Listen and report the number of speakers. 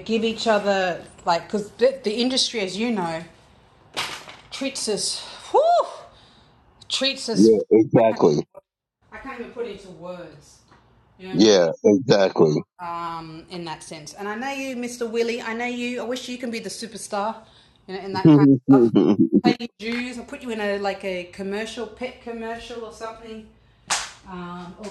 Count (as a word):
two